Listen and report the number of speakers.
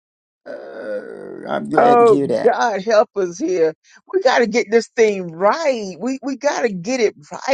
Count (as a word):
two